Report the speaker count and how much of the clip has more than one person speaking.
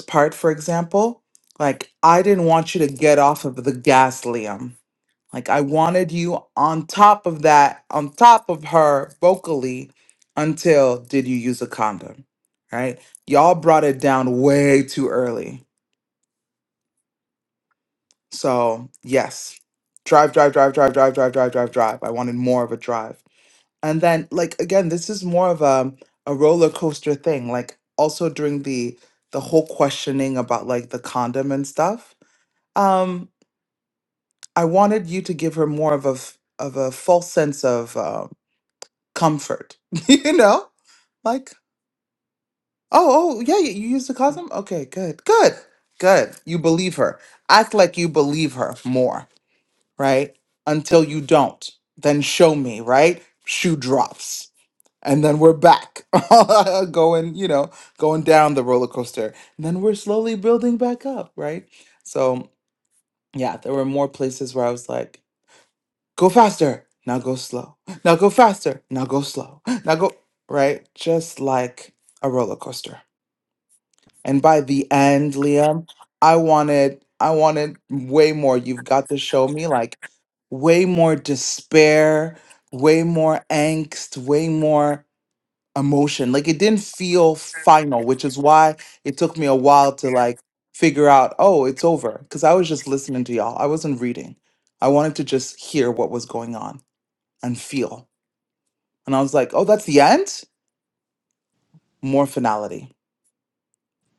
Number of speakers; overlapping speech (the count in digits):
1, no overlap